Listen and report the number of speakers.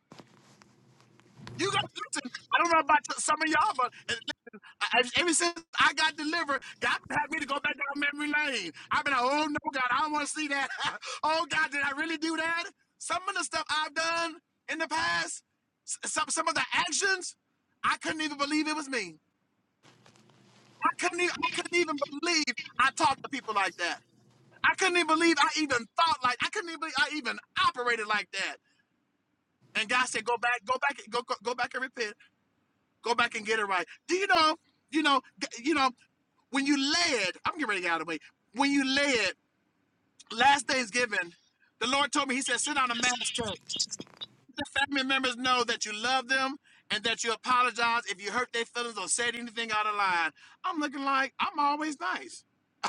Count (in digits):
1